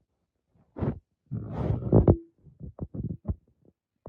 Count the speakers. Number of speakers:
0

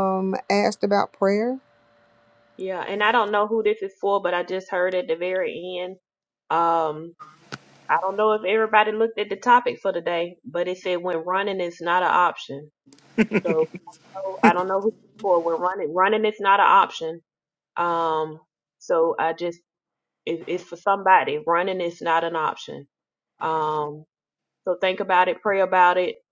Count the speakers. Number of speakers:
2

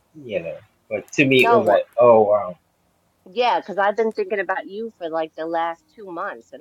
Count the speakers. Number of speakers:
2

